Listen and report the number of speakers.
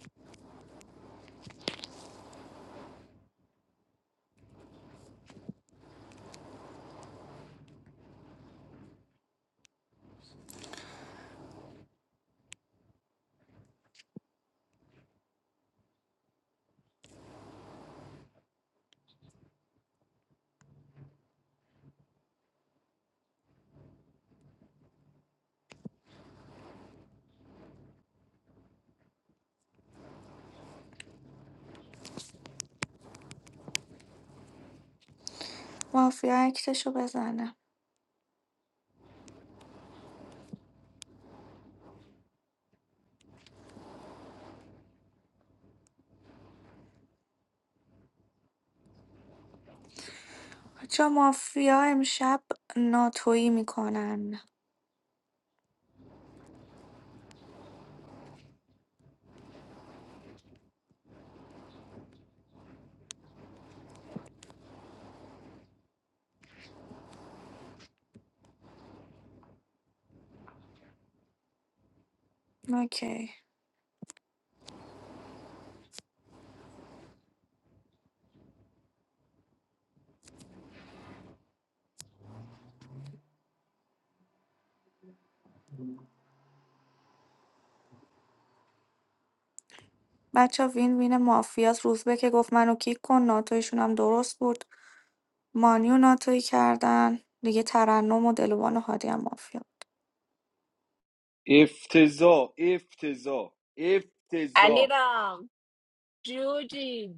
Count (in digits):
3